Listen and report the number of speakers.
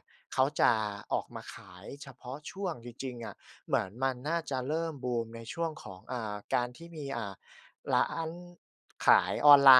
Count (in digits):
1